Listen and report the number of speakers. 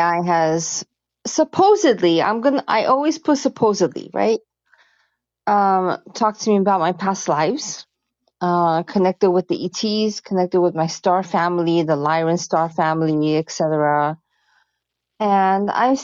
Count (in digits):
1